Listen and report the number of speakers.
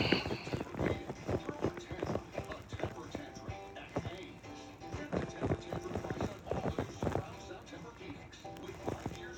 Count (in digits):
0